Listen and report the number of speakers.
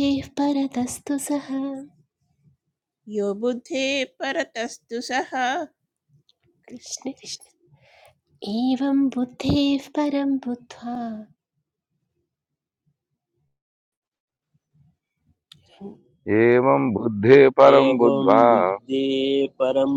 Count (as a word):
four